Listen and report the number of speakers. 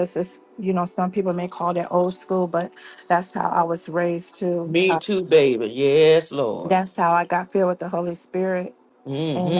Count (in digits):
2